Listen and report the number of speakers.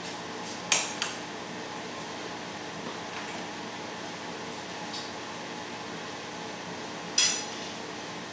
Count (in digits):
0